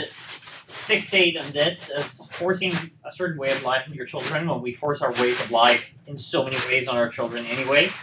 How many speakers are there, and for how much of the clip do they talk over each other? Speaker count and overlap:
one, no overlap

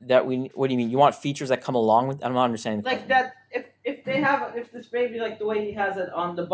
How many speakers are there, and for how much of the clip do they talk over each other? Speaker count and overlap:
two, about 5%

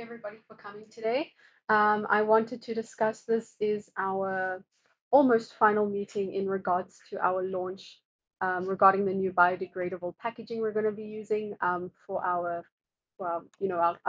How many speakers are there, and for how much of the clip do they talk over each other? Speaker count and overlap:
one, no overlap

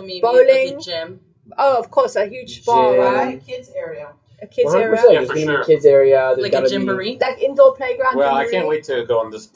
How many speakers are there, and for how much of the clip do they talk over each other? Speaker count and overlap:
five, about 42%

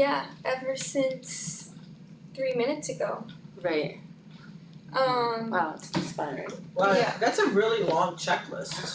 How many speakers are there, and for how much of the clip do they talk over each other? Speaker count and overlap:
three, about 5%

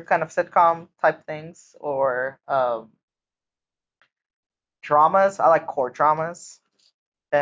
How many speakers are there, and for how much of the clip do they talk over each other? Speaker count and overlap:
one, no overlap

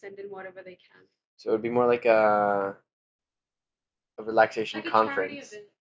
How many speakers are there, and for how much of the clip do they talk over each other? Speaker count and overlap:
two, about 14%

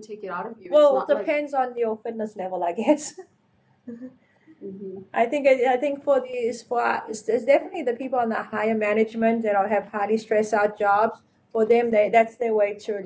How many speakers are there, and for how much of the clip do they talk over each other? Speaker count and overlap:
two, about 5%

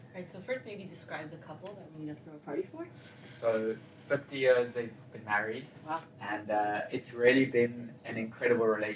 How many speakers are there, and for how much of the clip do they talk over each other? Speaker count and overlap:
two, about 4%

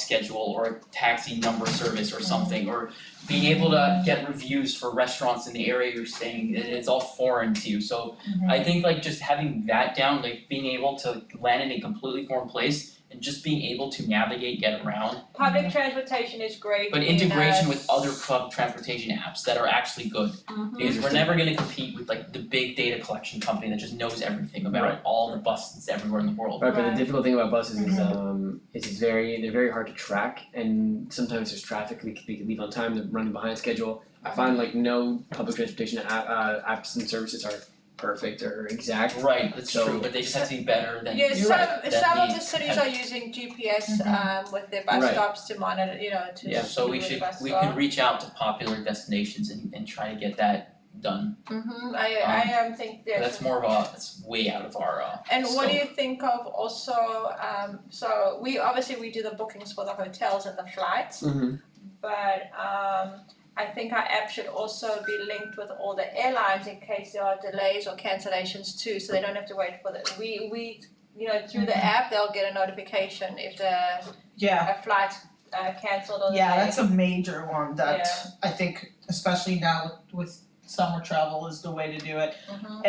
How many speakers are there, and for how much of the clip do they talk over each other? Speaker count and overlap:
four, about 13%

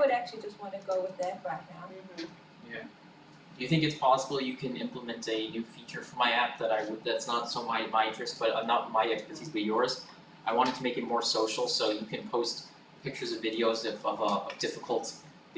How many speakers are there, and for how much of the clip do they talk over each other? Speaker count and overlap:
two, no overlap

